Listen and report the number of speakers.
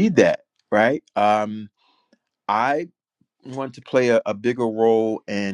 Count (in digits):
1